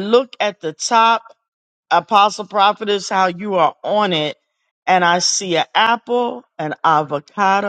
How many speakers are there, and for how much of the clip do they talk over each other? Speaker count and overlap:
1, no overlap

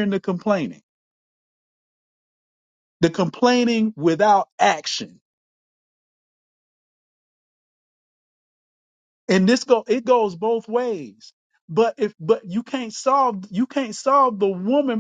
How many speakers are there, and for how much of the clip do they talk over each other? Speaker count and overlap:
1, no overlap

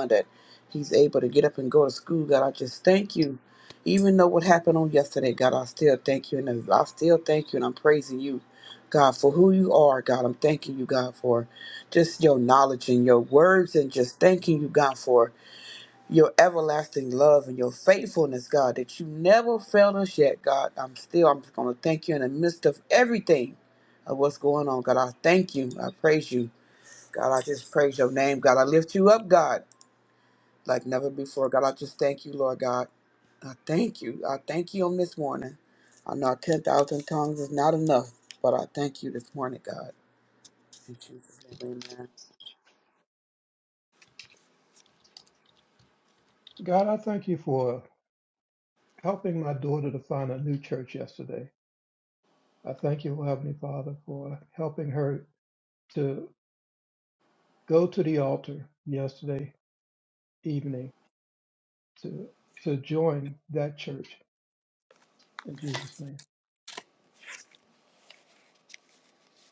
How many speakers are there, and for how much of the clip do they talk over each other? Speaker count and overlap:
2, no overlap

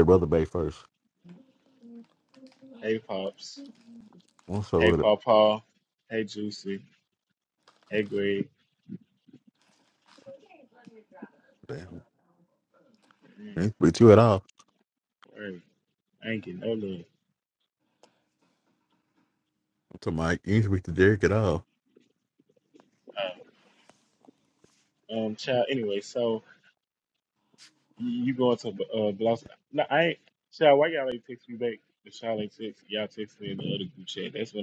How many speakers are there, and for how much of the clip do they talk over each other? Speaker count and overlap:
2, about 1%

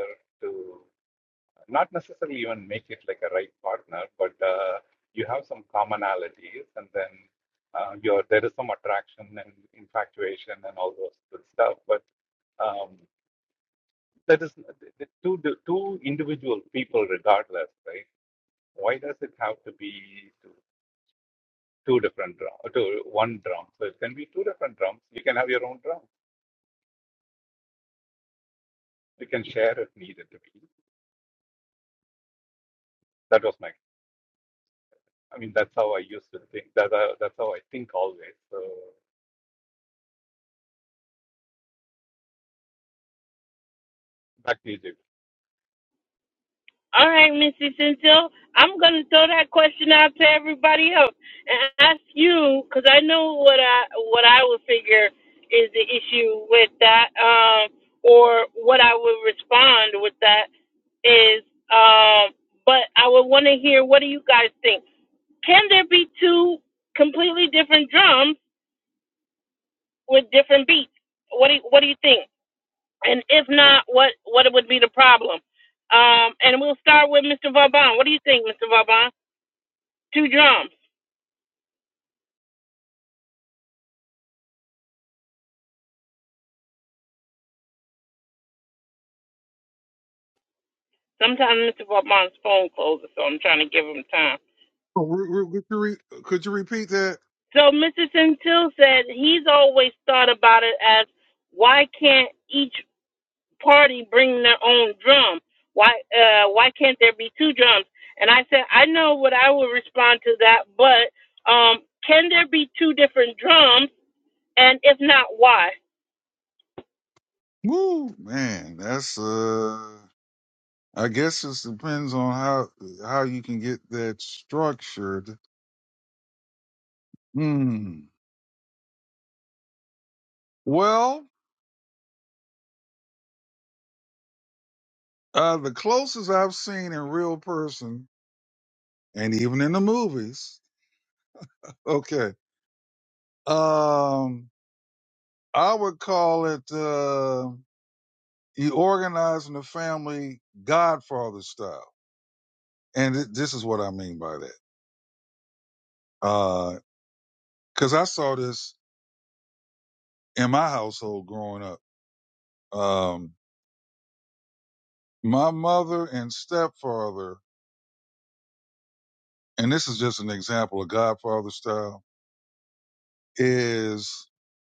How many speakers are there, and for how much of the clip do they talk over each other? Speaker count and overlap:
3, no overlap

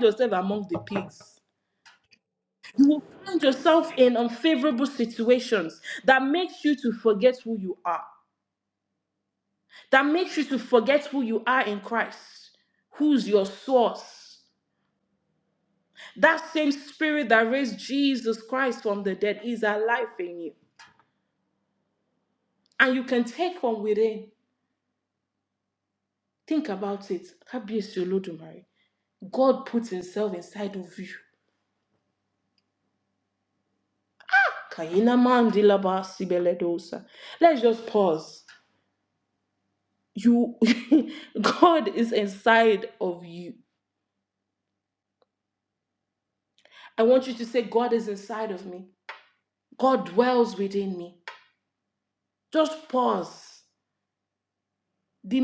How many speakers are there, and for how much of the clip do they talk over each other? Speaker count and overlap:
1, no overlap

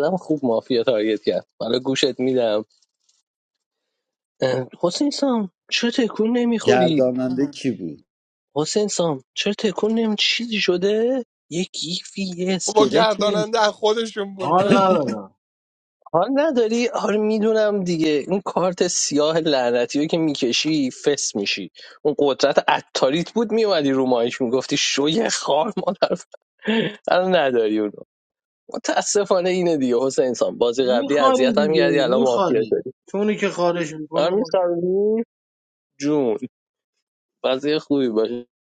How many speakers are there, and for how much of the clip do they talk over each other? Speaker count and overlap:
4, about 10%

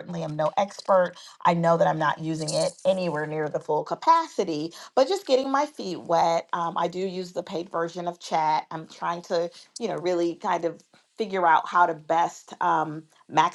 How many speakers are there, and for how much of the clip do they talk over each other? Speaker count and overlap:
1, no overlap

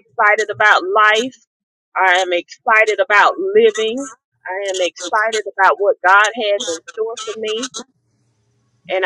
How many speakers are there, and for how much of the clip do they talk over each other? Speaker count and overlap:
1, no overlap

